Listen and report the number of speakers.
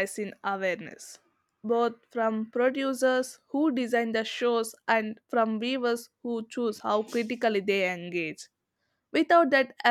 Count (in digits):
1